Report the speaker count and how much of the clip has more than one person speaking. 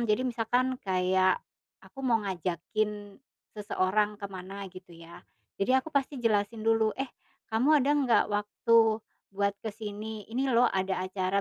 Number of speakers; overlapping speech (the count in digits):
1, no overlap